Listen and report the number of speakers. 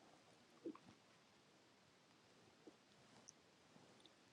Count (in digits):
0